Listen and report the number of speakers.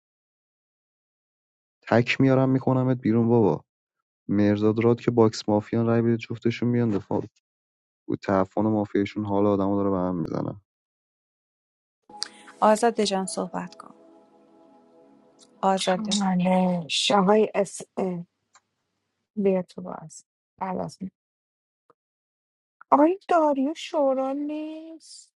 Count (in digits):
3